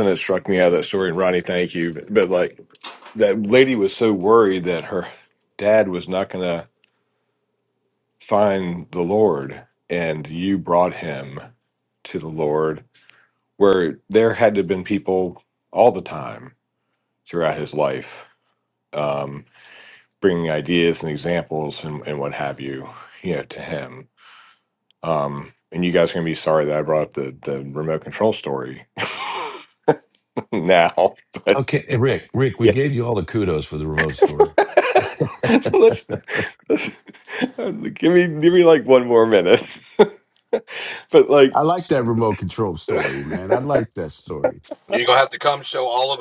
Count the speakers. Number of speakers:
four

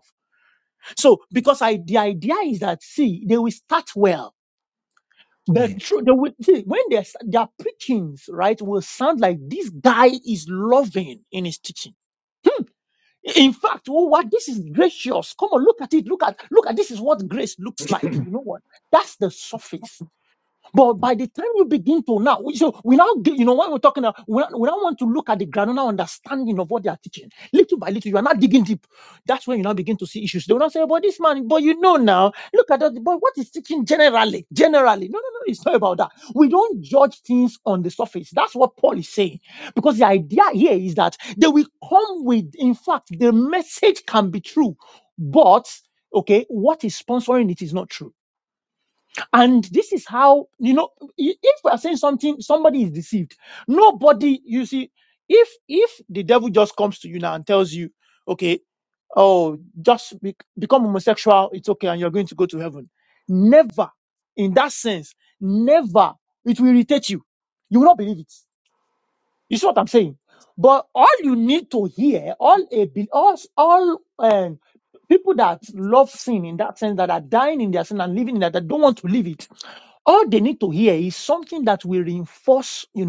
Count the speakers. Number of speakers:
one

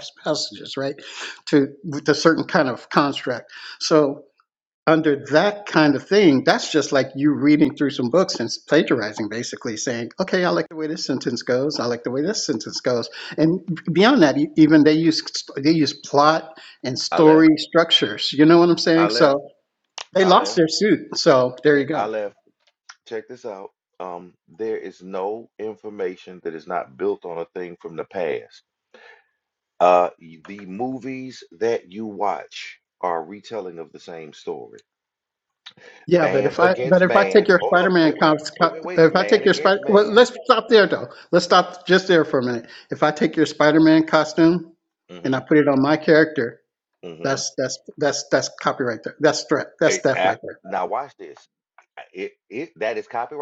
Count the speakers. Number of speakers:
two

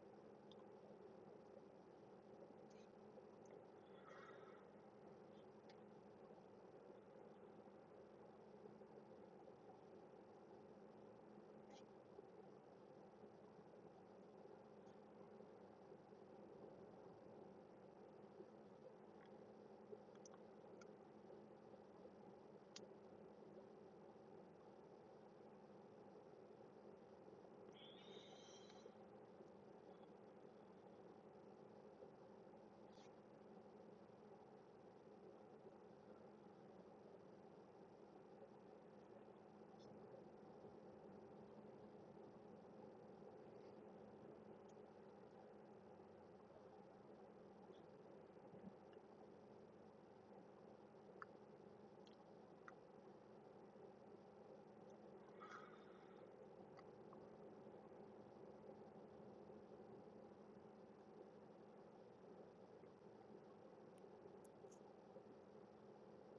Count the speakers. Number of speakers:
zero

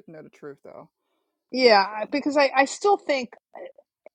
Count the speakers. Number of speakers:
two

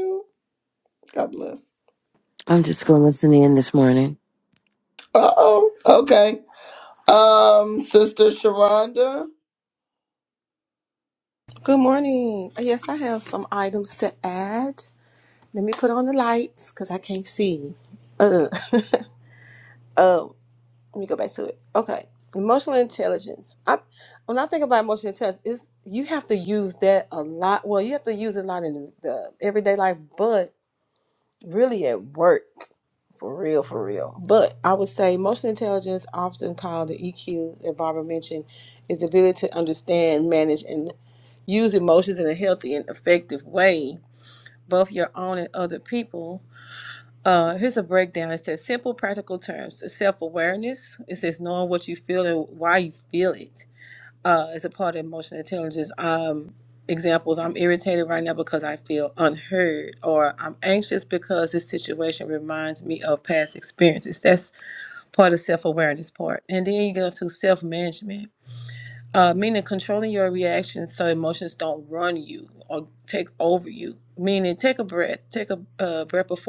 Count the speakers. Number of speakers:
three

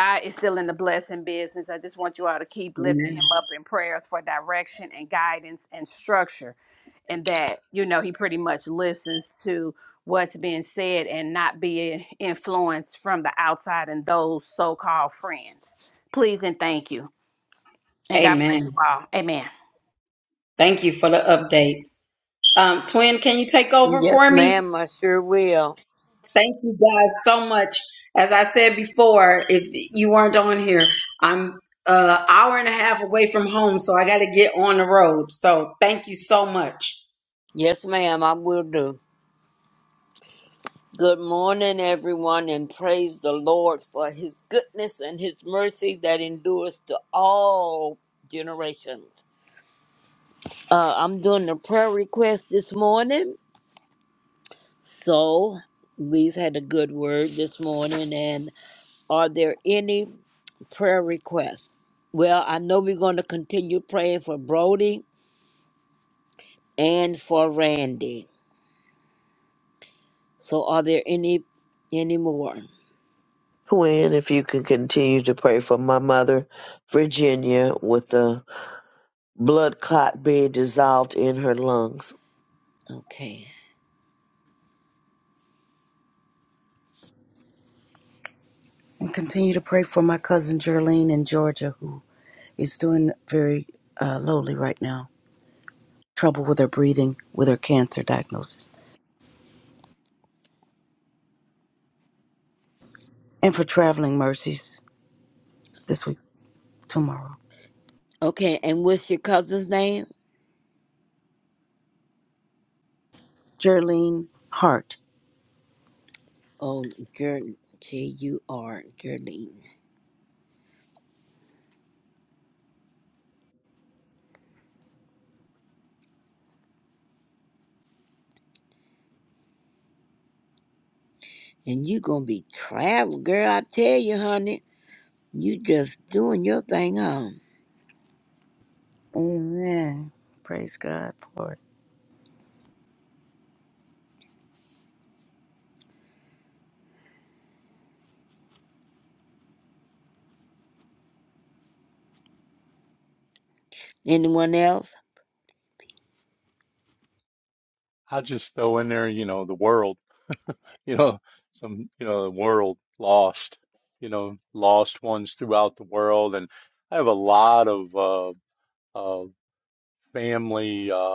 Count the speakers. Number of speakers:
six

